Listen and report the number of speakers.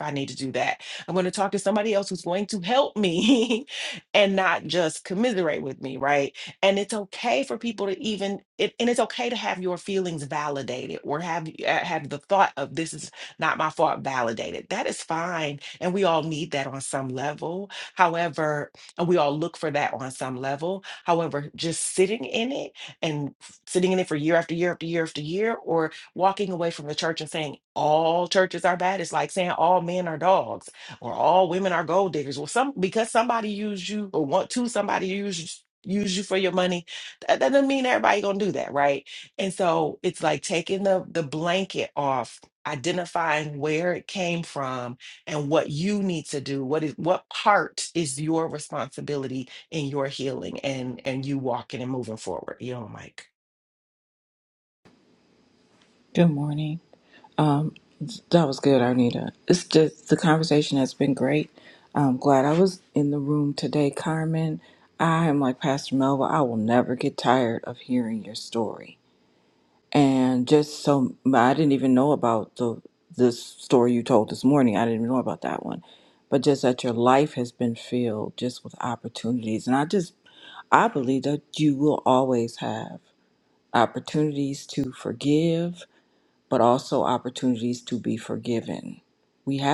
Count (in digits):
2